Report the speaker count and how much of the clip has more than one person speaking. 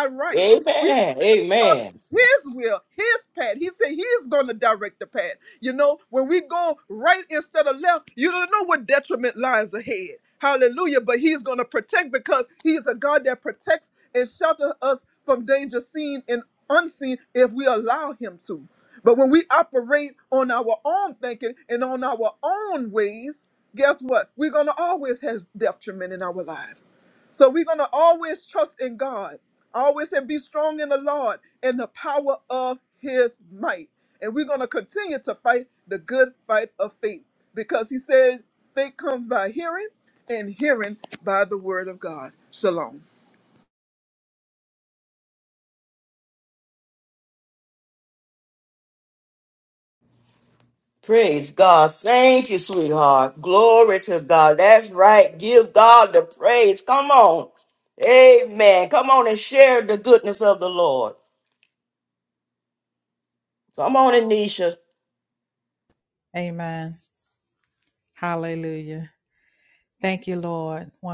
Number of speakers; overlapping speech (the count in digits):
3, under 1%